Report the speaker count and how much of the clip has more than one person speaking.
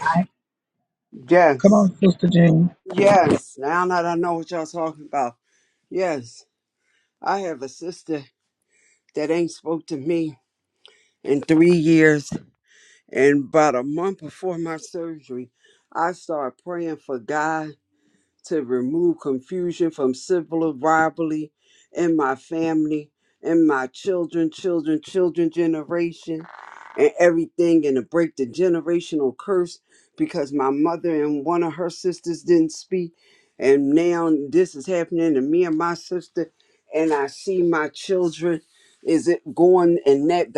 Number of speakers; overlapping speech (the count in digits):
2, no overlap